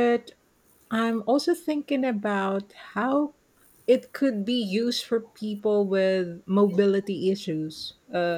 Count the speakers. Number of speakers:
1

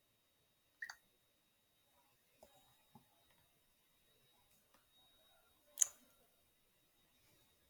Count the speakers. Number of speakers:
0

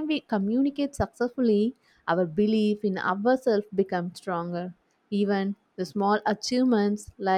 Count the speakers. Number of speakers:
1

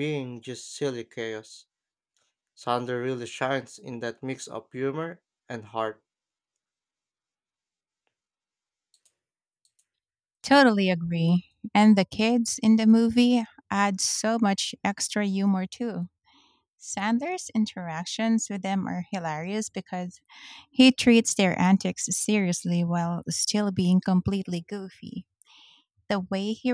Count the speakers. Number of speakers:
2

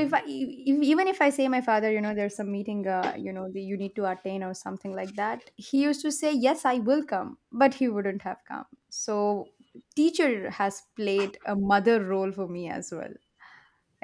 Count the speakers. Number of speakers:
1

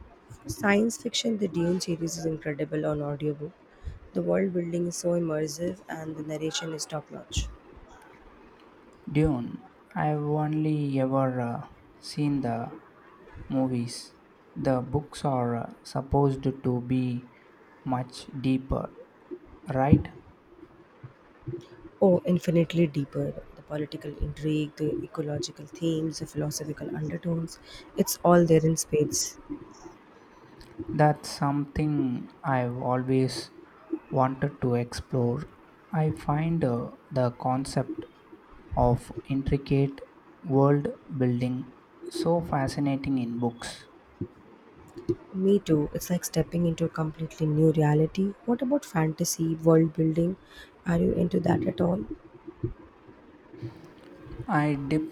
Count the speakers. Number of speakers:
2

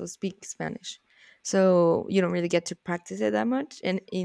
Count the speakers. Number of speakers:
1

